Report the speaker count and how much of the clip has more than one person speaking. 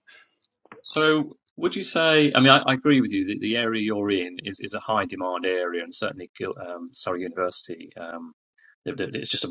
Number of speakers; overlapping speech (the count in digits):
1, no overlap